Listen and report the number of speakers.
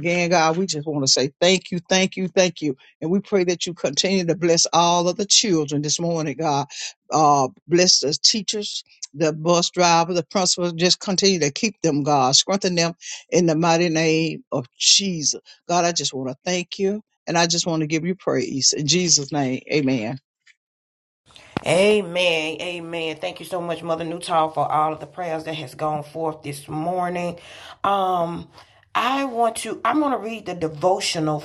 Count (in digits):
2